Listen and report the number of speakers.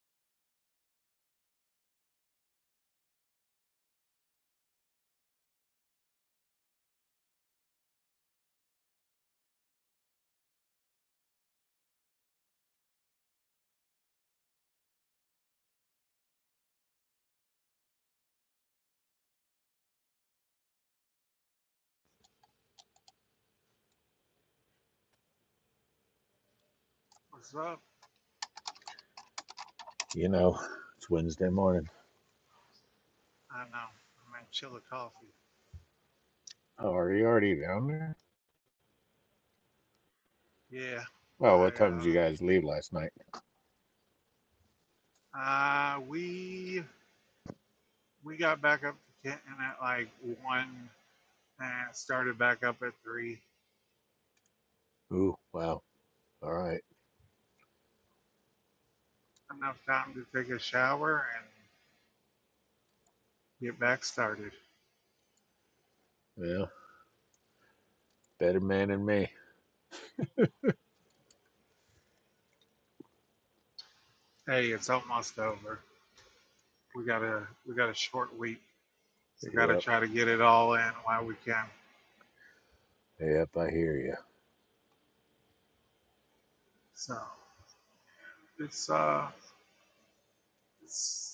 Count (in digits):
2